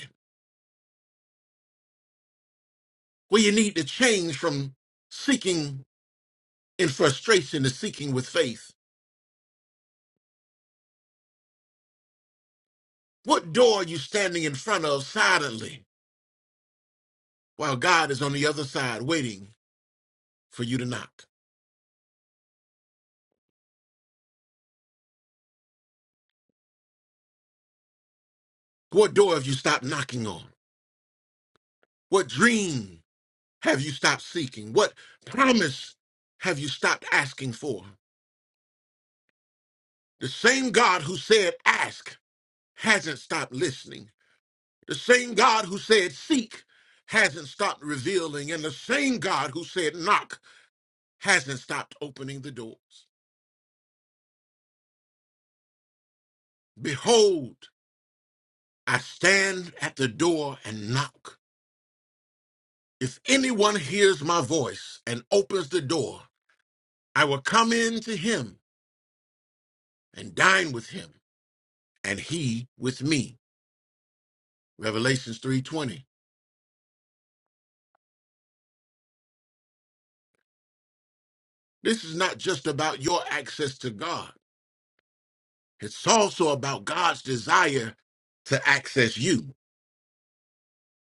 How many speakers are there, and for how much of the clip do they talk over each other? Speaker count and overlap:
one, no overlap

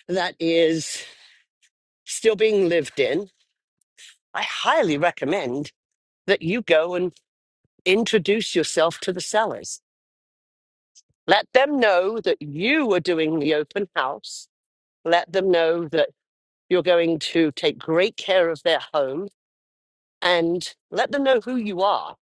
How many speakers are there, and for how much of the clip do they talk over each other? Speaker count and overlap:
one, no overlap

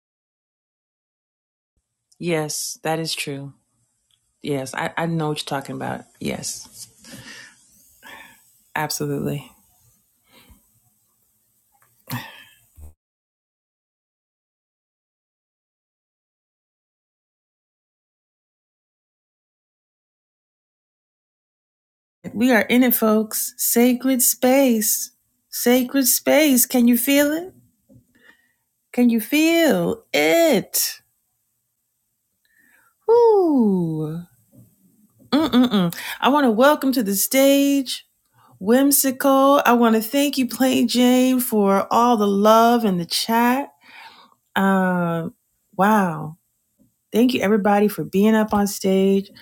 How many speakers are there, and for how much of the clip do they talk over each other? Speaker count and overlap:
one, no overlap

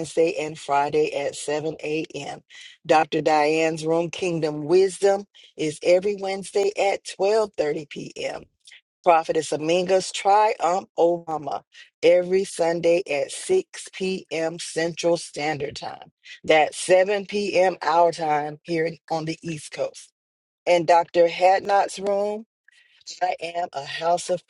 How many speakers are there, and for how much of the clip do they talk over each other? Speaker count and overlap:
one, no overlap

